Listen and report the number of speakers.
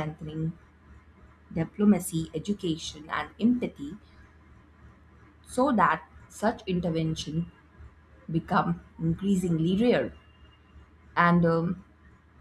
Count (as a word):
one